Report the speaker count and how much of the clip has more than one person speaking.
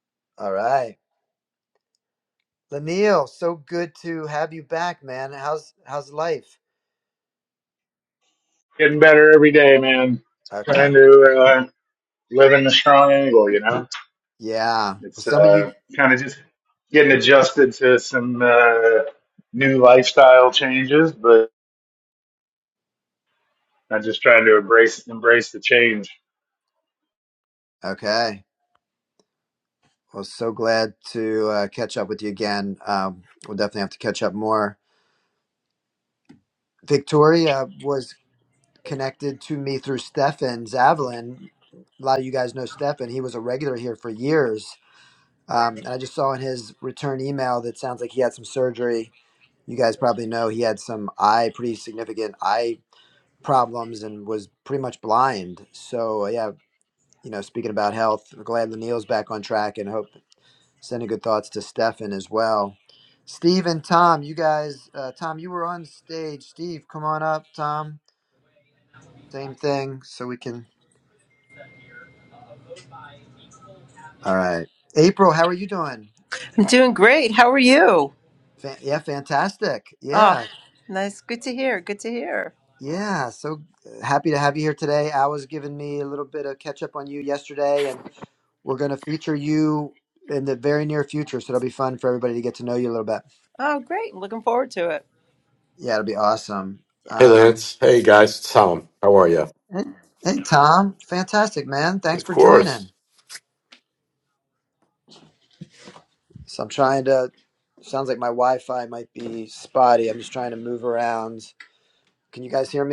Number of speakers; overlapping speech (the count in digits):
4, about 2%